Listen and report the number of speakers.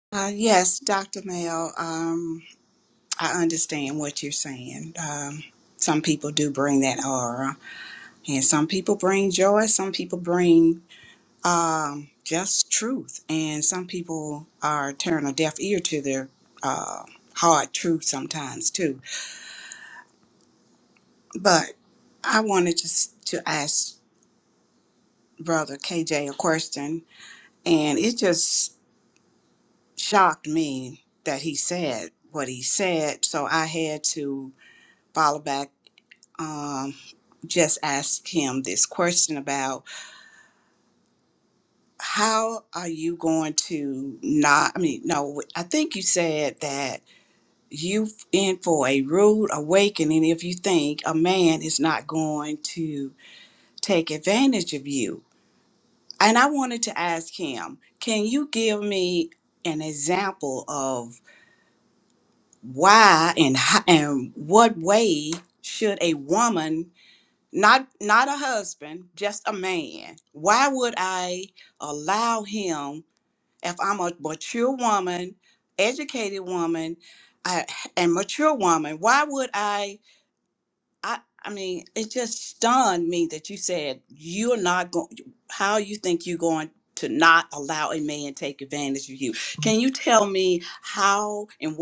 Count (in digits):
1